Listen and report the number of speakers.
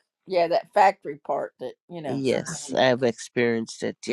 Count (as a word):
two